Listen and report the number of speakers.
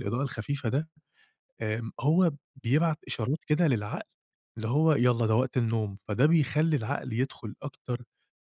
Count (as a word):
one